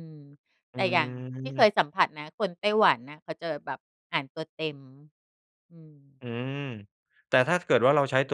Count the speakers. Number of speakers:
2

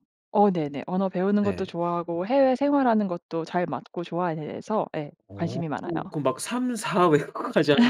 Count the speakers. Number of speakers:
2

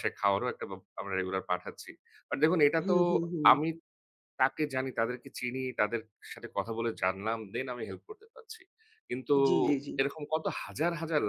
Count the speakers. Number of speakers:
2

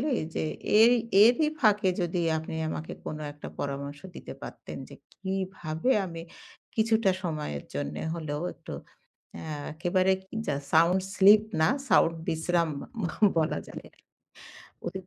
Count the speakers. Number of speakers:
1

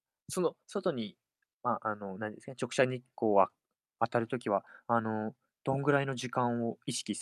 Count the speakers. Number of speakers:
1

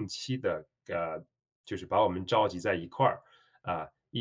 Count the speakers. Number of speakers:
1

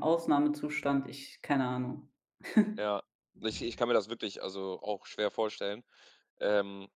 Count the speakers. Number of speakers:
2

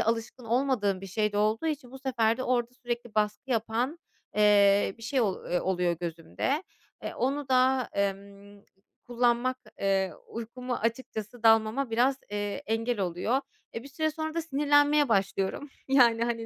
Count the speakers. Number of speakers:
1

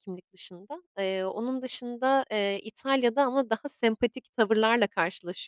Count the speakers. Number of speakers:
1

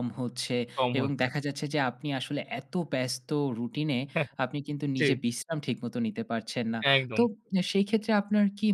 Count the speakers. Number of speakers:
2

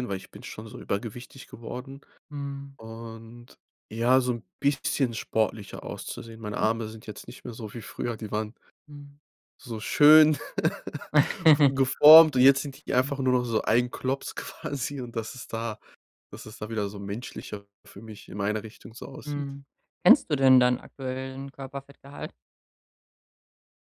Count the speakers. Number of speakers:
2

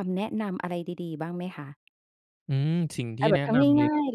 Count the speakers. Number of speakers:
2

